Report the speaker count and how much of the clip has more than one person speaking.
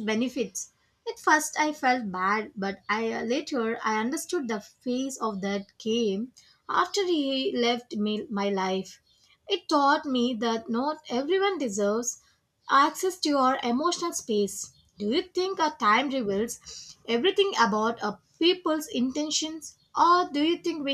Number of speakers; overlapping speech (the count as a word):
one, no overlap